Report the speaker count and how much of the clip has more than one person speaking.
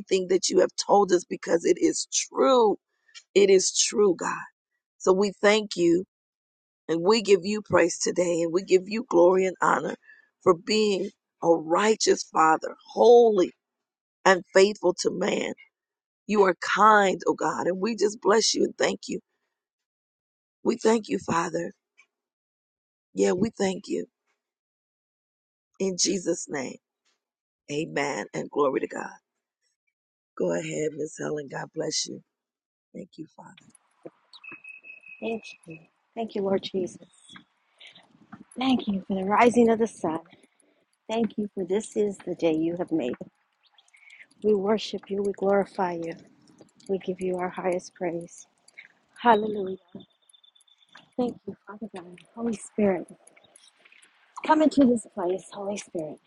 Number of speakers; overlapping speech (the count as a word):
two, no overlap